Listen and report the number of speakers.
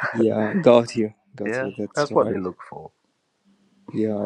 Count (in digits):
2